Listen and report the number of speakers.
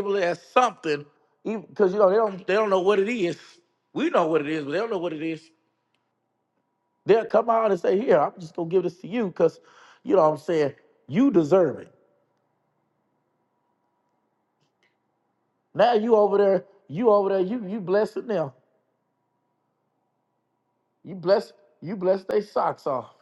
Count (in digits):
1